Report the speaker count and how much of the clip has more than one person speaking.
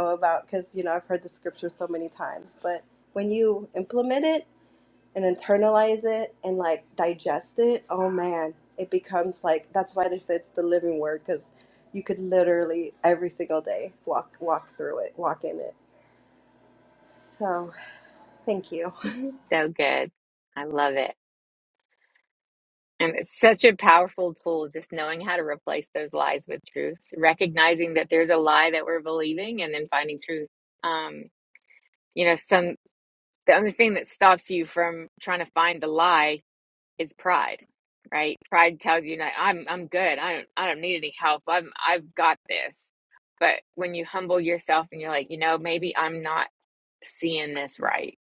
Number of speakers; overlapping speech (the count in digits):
2, no overlap